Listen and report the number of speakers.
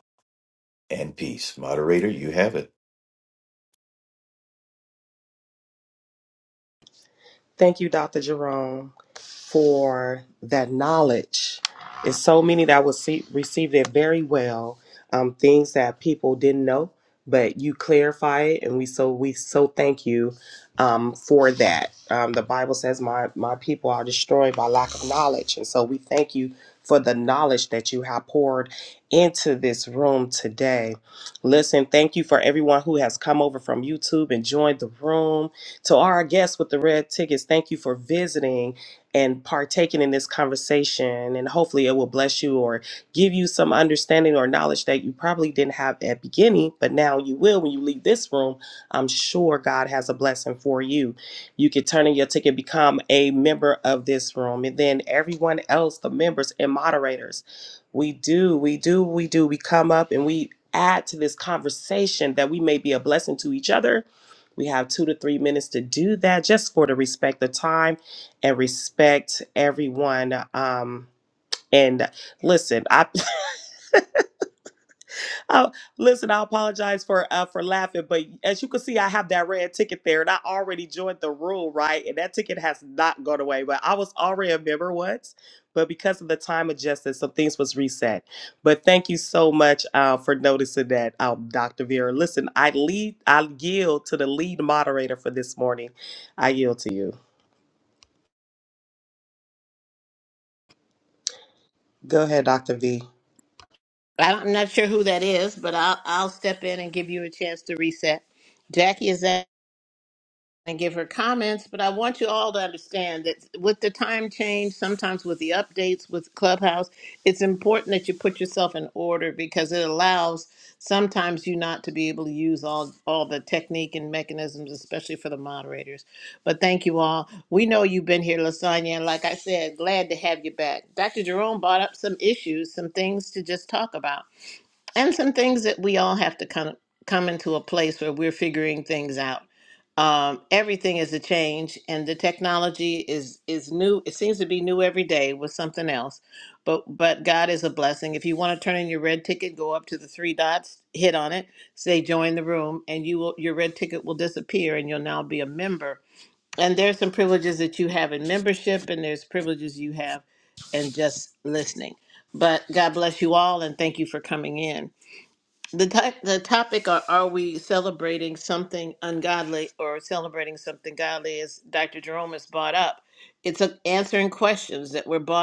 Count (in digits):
3